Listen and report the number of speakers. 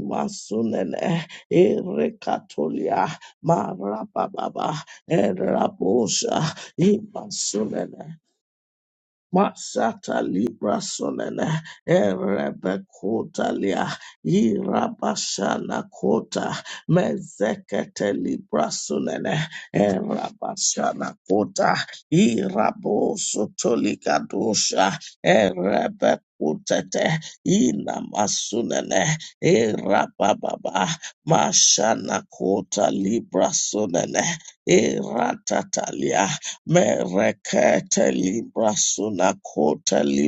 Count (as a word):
one